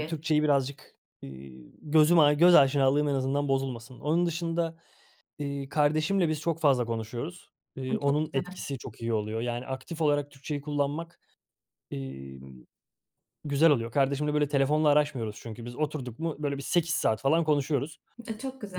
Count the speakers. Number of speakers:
two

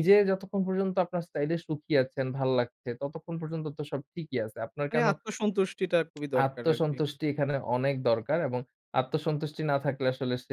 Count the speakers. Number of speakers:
two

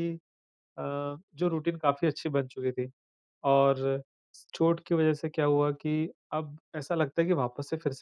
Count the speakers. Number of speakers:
one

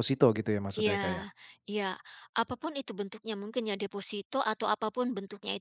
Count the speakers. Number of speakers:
two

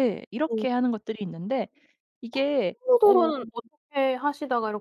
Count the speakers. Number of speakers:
two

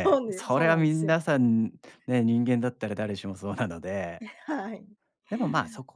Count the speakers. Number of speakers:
two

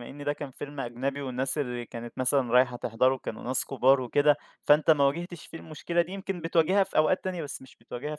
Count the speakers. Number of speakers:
one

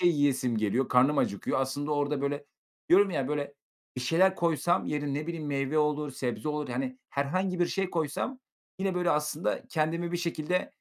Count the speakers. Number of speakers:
one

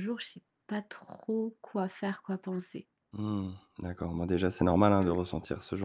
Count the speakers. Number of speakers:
two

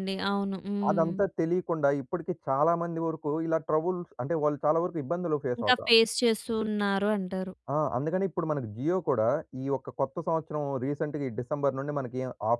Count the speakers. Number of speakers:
two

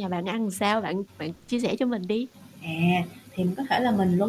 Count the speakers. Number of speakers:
two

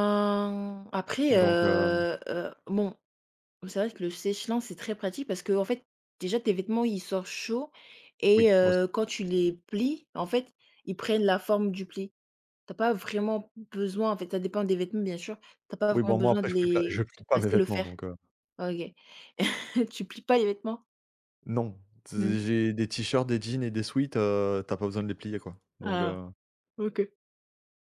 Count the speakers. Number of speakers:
two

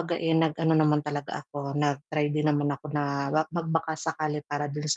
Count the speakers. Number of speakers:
one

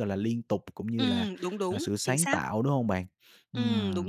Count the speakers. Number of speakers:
two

